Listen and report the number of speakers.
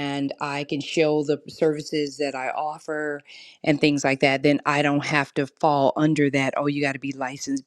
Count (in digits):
1